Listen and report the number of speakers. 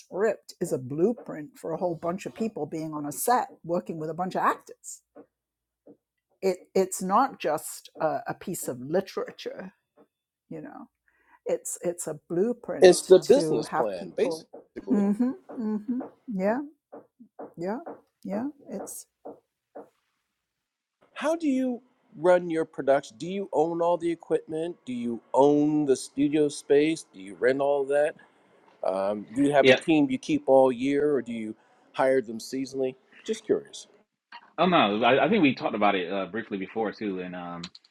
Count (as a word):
three